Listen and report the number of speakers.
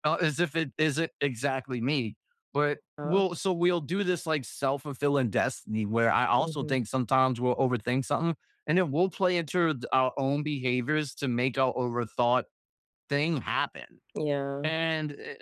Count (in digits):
2